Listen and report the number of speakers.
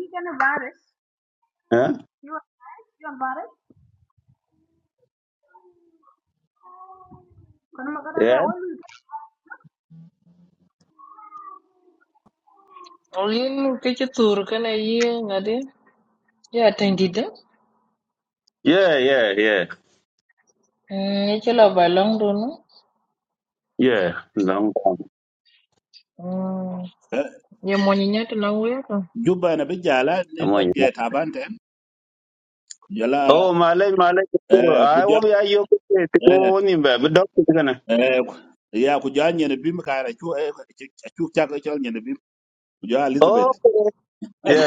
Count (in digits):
4